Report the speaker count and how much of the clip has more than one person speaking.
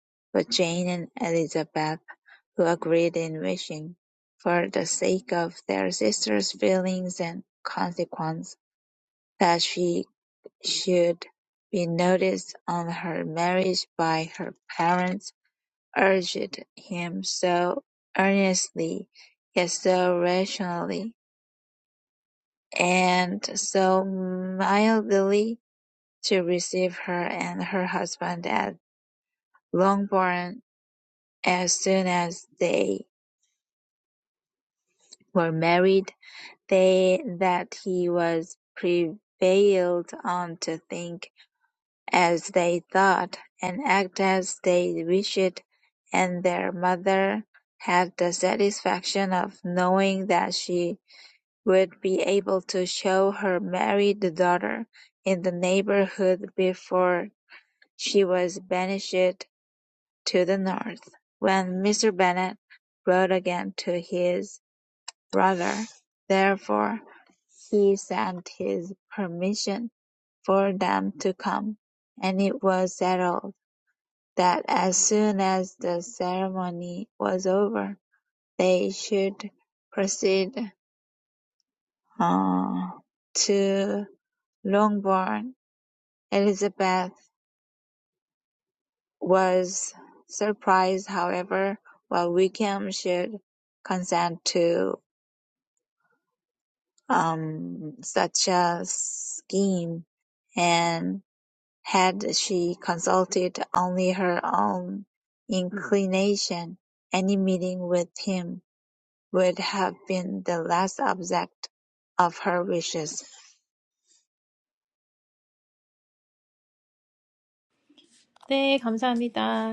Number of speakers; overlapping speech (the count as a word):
two, no overlap